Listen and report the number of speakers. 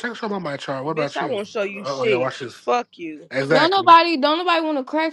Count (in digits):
3